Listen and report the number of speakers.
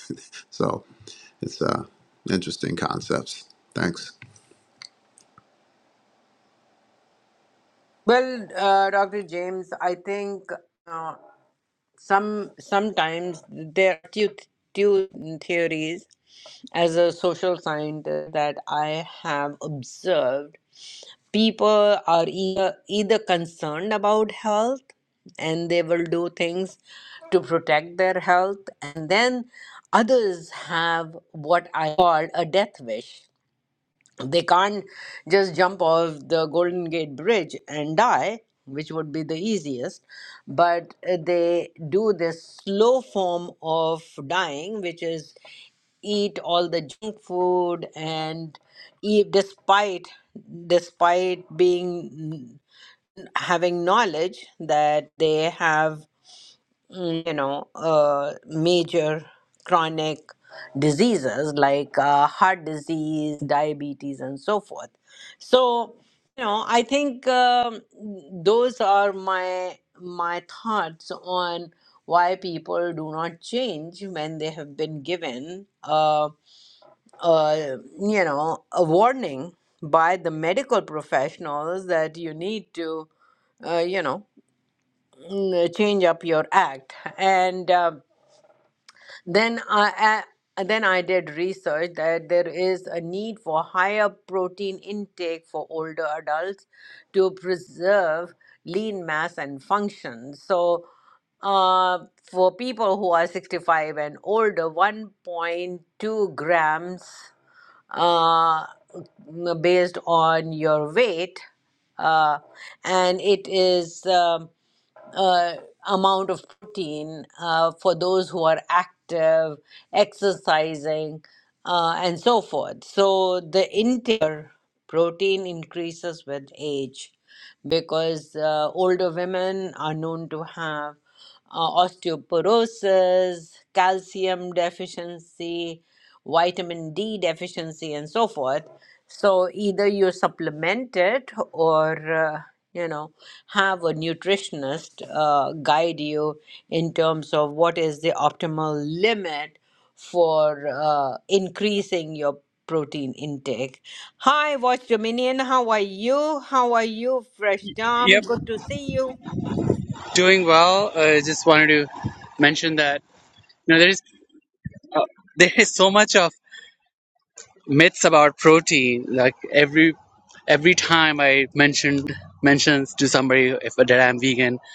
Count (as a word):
three